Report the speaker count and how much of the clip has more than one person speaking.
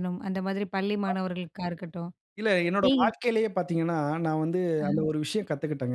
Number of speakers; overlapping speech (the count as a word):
two, about 10%